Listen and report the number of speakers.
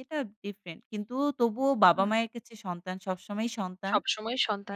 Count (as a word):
two